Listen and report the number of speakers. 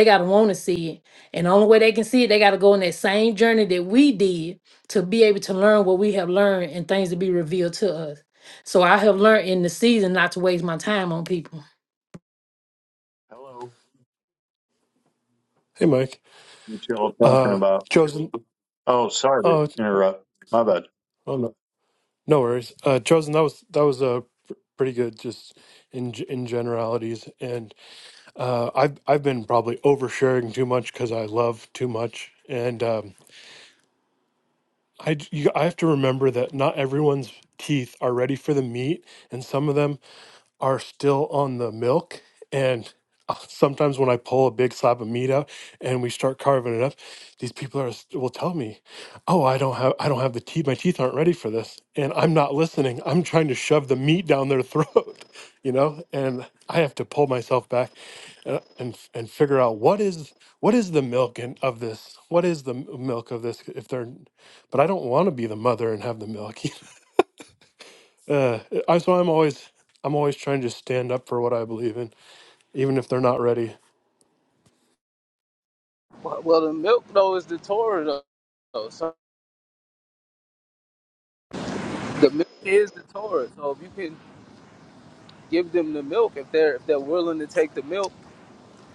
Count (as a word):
four